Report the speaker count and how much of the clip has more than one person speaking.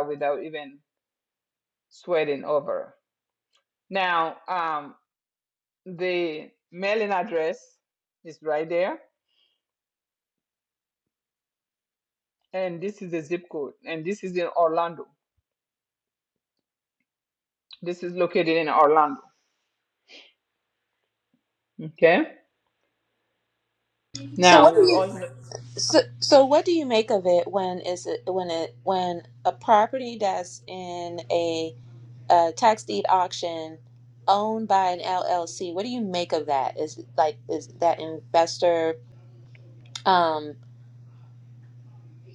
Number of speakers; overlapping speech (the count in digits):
2, about 2%